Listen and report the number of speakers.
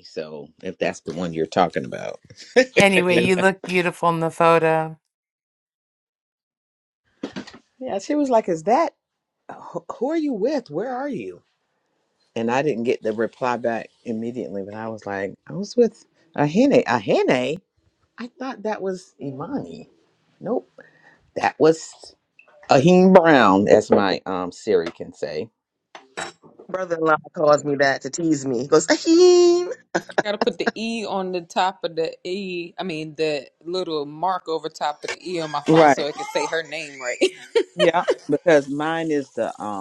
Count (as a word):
four